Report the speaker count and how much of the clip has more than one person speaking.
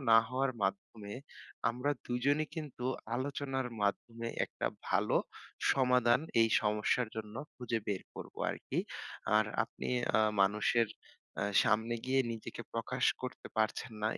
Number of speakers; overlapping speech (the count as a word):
one, no overlap